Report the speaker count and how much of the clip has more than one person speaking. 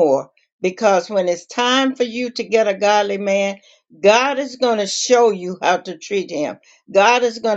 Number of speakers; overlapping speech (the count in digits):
1, no overlap